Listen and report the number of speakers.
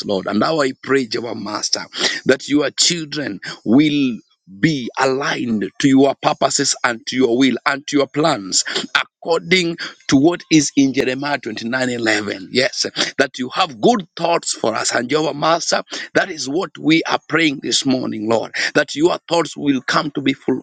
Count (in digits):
1